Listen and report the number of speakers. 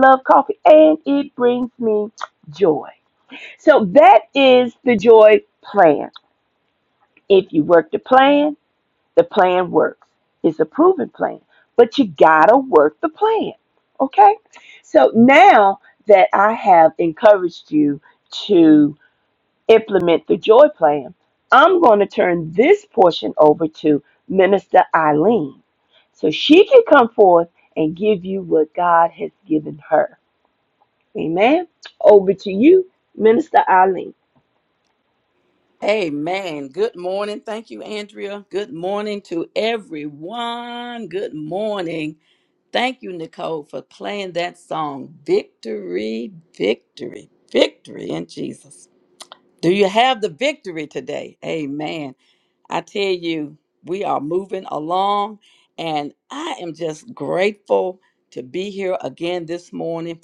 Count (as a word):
two